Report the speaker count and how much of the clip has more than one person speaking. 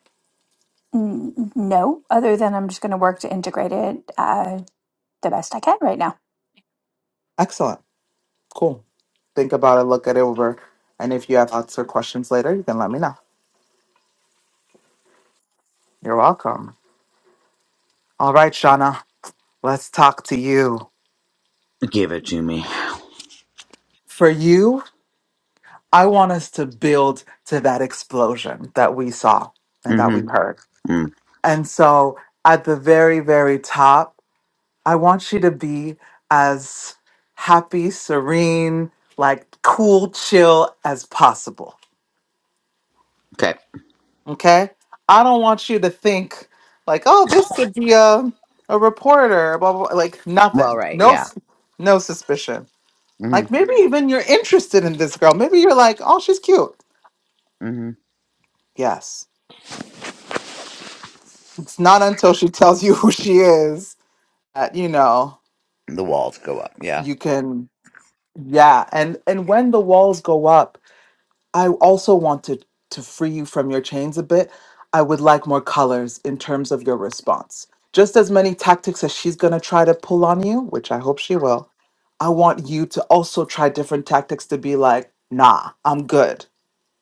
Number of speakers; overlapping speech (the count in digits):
3, about 1%